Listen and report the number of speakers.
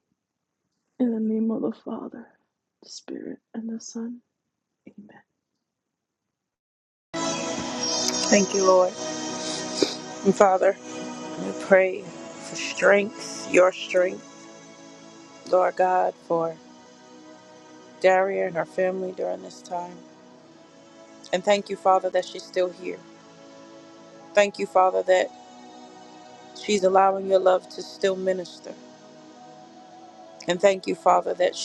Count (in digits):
2